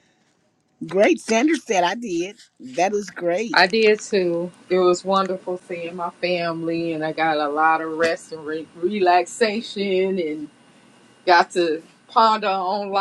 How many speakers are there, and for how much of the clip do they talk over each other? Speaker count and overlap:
two, under 1%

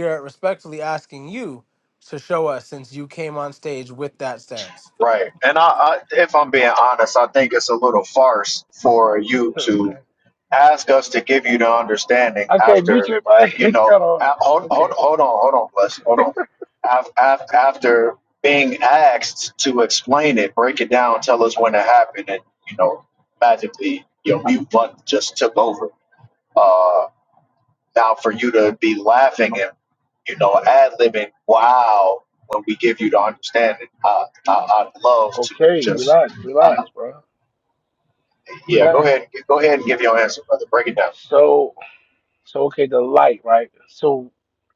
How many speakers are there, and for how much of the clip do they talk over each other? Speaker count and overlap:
three, about 8%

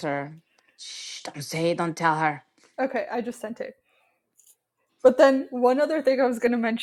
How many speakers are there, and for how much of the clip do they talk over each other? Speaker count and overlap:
two, no overlap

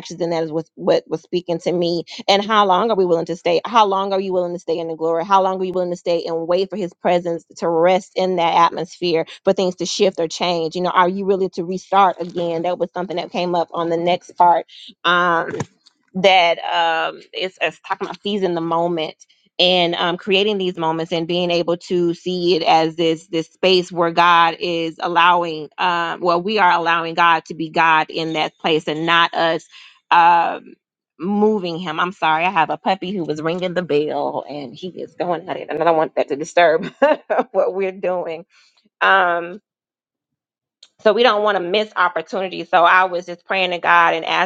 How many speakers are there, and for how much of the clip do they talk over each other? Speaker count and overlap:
one, no overlap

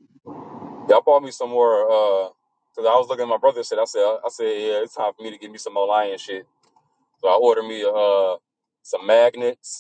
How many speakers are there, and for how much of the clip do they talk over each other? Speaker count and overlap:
one, no overlap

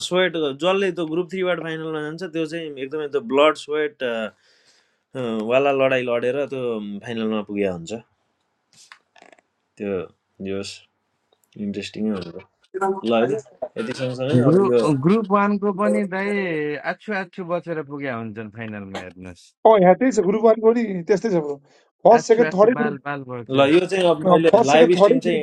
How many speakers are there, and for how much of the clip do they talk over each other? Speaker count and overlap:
three, about 9%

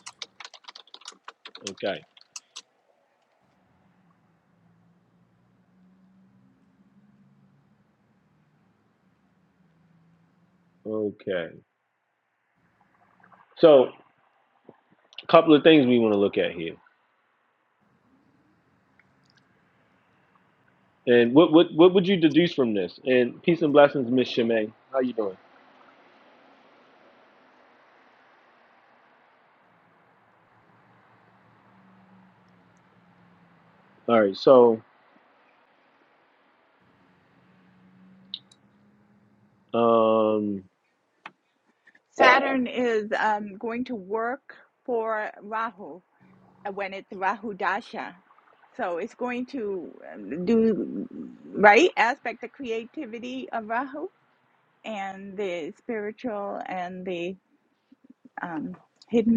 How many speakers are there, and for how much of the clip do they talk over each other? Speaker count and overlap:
two, no overlap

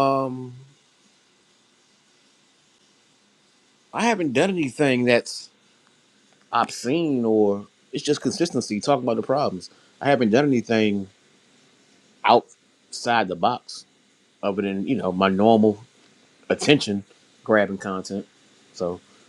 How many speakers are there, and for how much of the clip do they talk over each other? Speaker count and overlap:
one, no overlap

